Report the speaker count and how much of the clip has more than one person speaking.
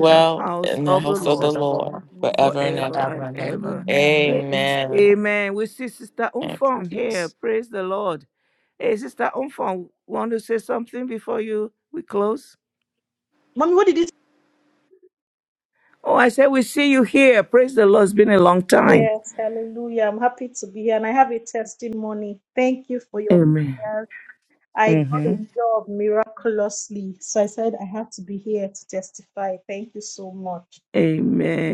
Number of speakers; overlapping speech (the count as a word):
three, about 12%